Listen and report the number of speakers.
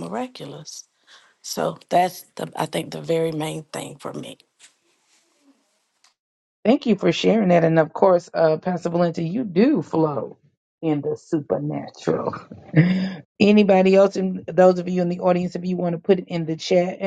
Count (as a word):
two